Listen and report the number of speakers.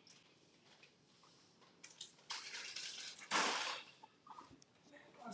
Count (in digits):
0